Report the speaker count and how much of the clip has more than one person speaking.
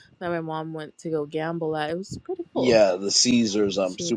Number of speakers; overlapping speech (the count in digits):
2, about 10%